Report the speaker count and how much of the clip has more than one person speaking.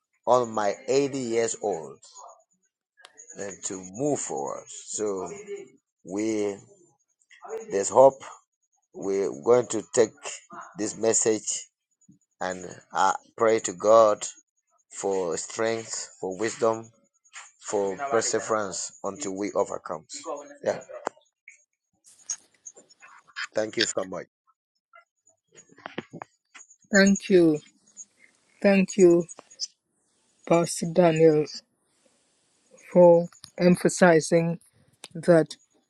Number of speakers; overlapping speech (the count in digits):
2, no overlap